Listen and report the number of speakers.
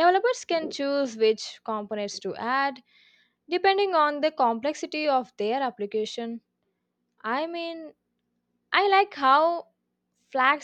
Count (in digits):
1